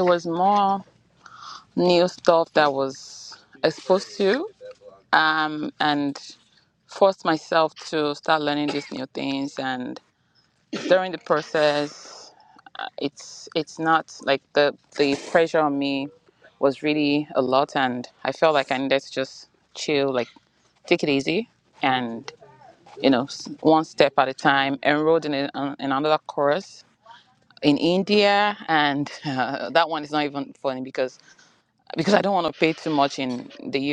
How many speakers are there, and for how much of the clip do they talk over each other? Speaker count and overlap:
one, no overlap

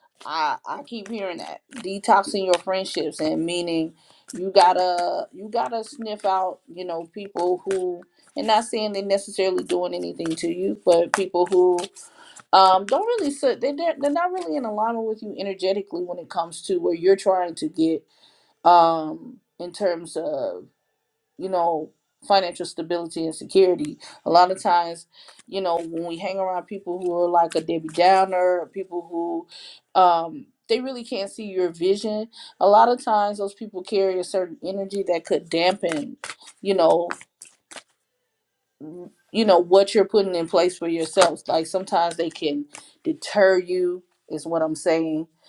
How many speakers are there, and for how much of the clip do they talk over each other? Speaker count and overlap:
one, no overlap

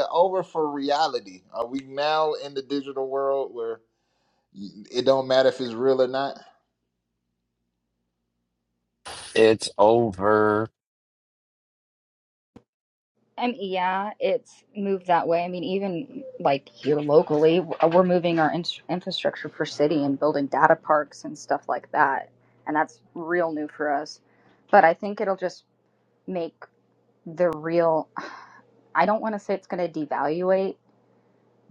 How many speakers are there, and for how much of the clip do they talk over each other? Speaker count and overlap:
three, no overlap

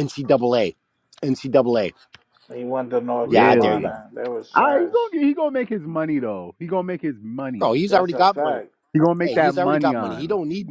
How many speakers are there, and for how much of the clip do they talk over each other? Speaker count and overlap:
three, about 27%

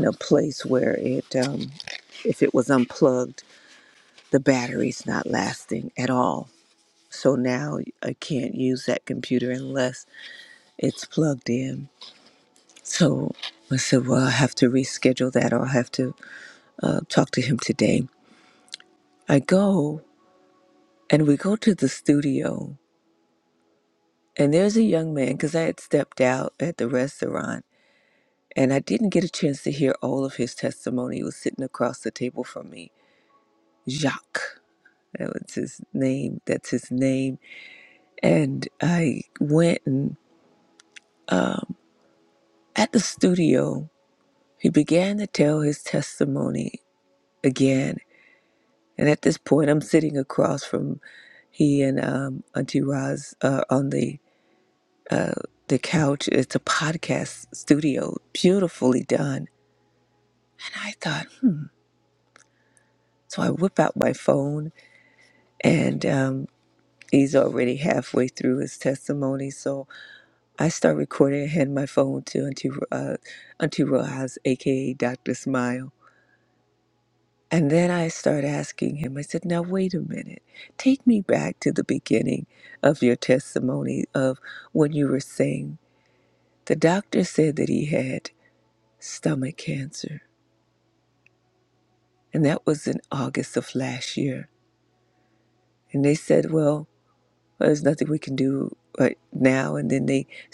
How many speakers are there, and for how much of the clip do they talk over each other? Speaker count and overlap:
one, no overlap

